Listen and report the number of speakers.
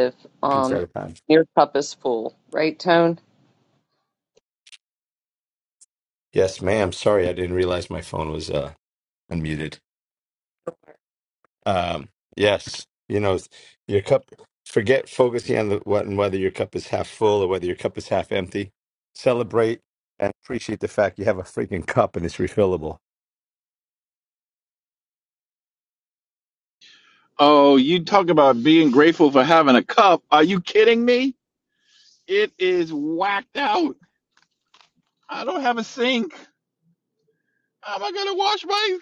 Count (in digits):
3